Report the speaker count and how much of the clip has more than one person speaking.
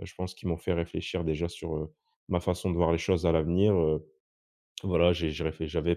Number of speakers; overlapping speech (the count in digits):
1, no overlap